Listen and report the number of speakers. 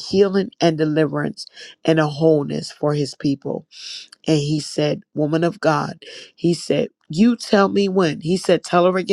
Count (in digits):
1